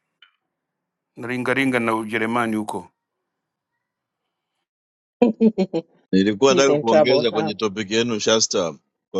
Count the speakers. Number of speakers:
three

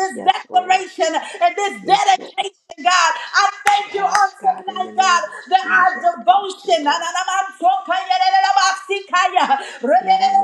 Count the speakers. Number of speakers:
two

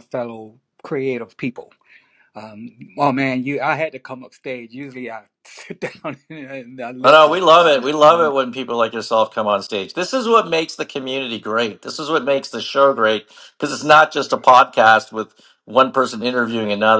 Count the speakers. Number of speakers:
two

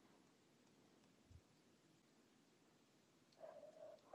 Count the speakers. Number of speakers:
zero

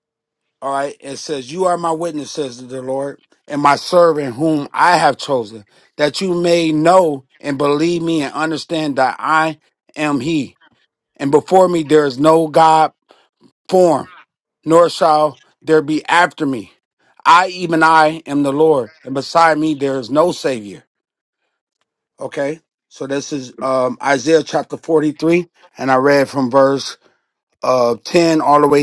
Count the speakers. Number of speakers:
one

